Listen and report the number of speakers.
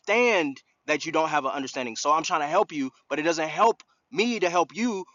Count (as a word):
one